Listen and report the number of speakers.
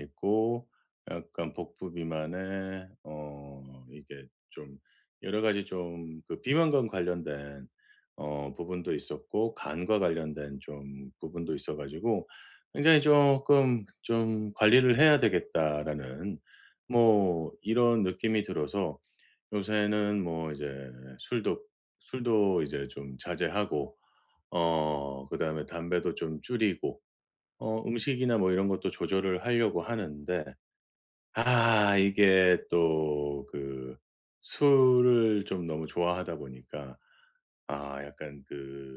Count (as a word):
one